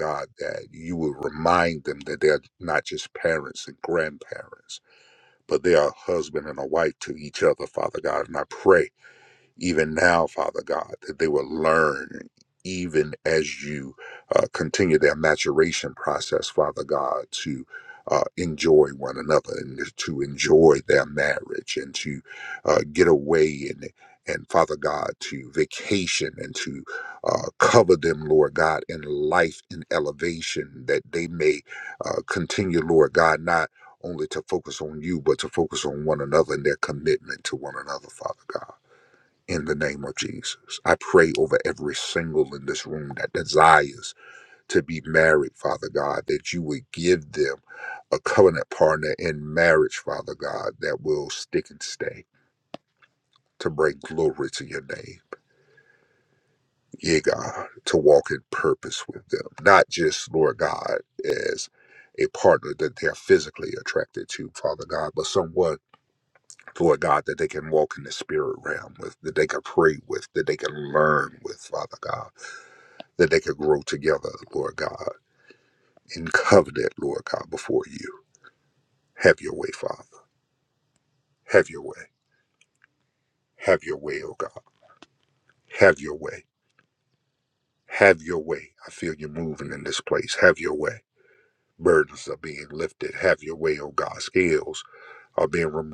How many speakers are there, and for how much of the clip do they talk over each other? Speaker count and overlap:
one, no overlap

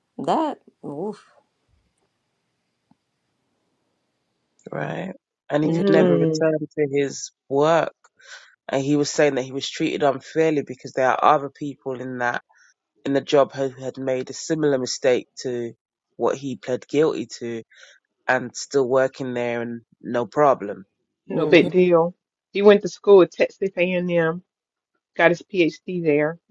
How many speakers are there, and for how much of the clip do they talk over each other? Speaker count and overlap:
three, about 4%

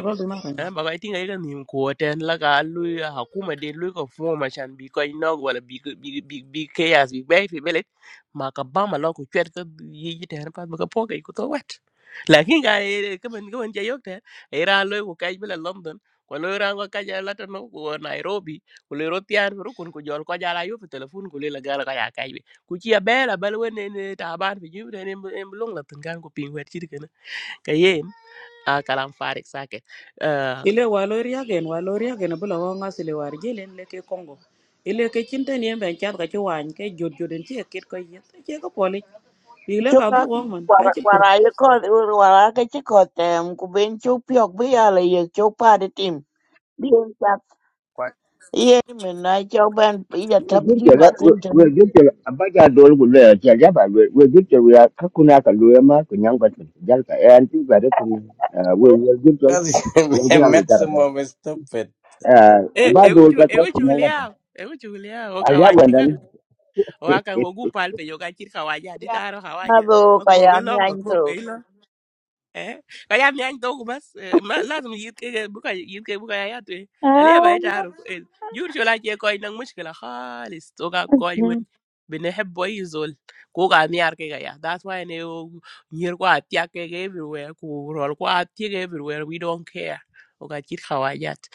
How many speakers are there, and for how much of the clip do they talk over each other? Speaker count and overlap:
five, about 6%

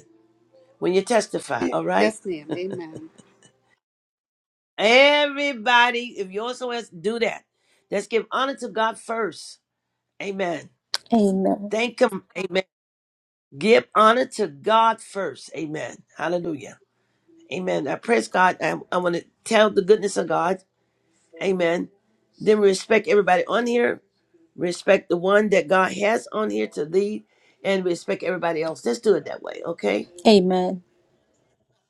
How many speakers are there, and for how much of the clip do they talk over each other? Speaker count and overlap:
three, about 1%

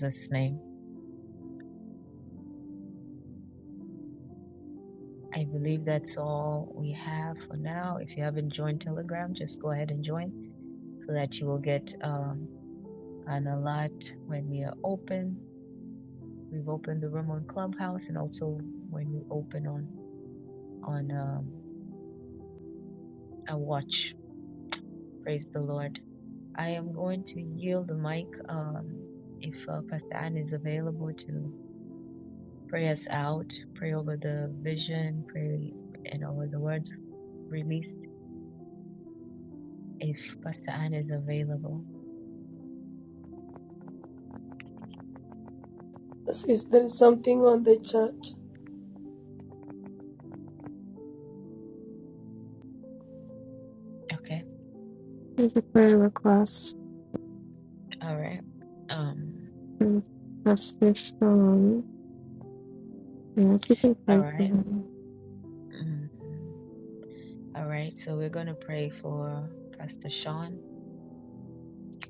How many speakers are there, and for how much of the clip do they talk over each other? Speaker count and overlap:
three, about 1%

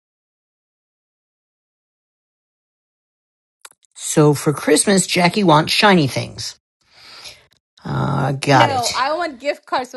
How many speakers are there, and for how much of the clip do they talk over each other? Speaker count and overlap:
two, about 5%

